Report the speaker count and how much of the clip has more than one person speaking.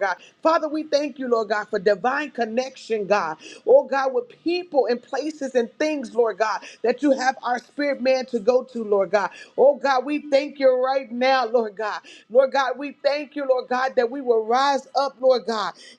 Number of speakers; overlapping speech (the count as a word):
one, no overlap